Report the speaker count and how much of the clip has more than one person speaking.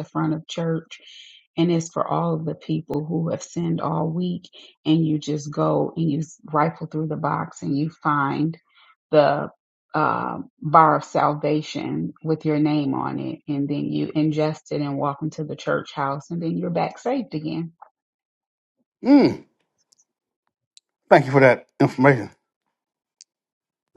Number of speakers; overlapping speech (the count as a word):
two, no overlap